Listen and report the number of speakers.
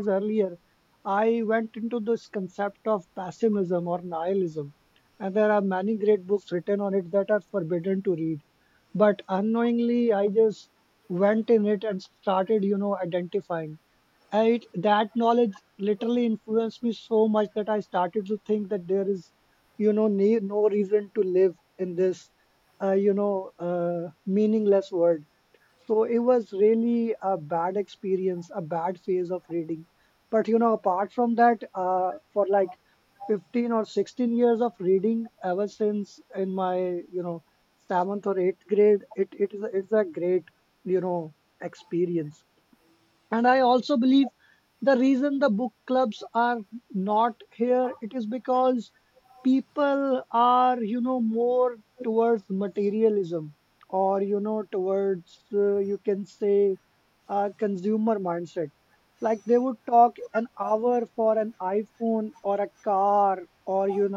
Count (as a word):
one